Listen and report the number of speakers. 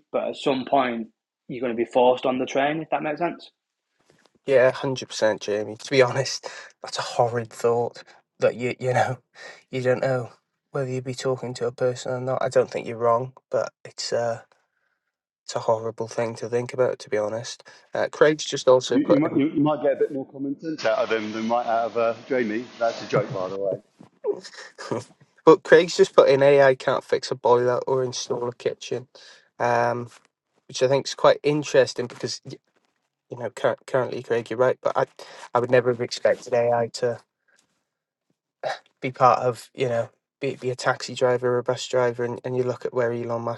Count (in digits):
3